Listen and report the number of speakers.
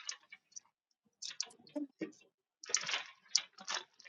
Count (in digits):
0